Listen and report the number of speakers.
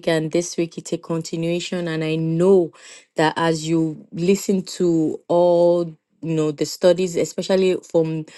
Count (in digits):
1